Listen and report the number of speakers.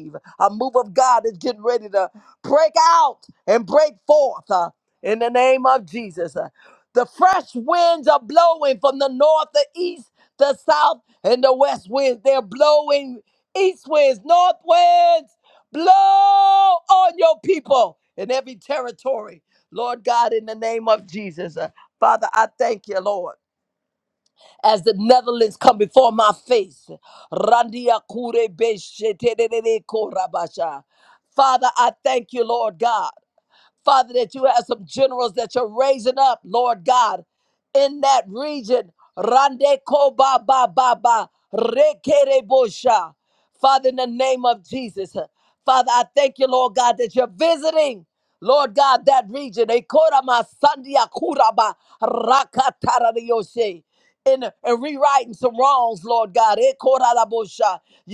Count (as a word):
one